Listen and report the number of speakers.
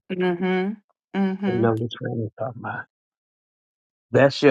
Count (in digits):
2